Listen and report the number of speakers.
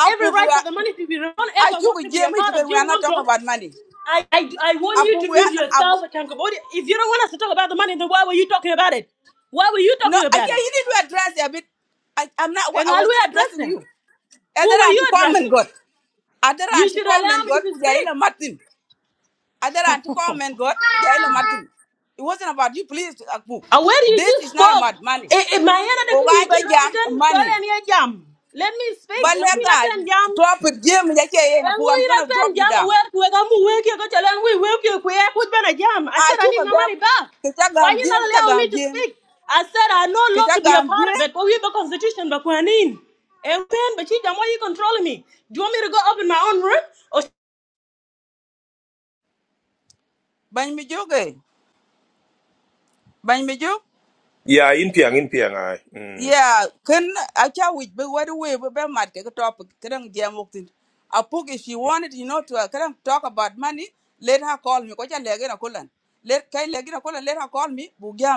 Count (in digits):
3